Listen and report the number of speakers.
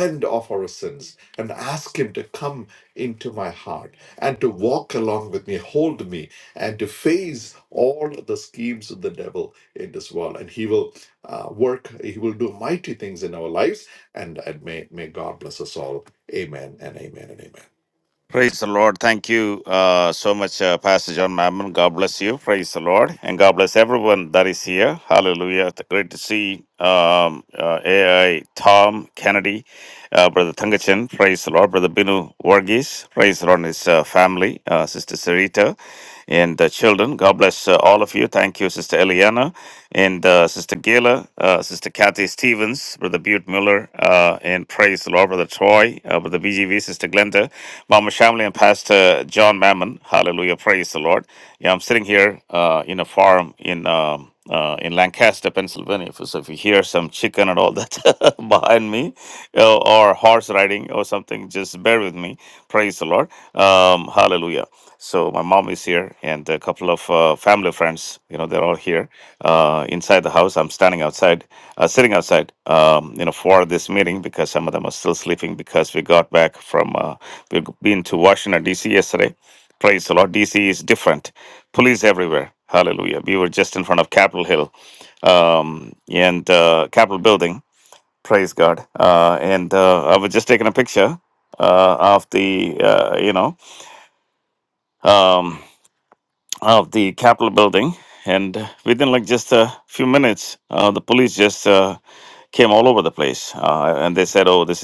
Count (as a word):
two